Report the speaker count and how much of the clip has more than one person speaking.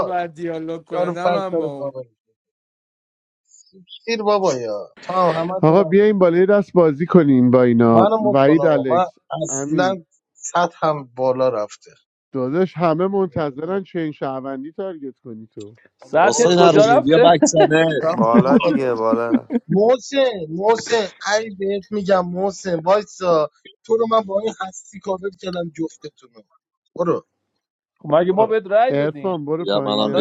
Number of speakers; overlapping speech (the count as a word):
six, about 21%